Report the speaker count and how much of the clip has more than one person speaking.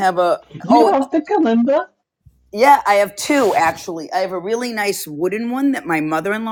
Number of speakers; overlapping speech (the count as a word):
two, about 9%